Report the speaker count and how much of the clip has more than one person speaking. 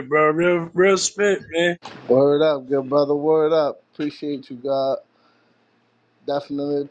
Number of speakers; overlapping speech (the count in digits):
2, no overlap